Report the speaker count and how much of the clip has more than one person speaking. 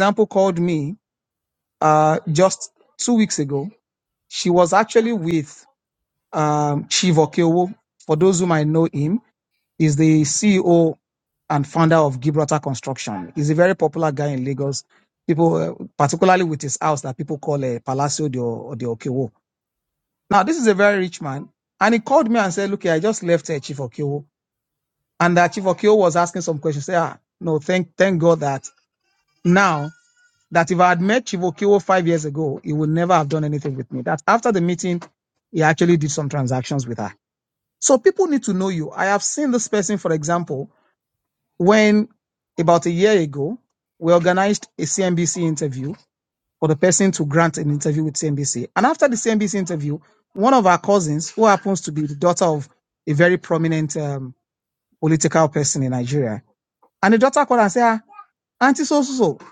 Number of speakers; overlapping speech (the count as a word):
one, no overlap